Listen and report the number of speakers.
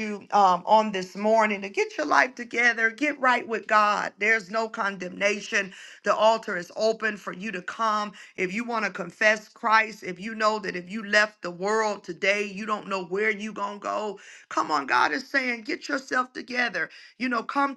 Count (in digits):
1